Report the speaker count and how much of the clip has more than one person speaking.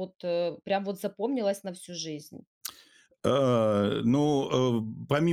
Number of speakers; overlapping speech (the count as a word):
two, no overlap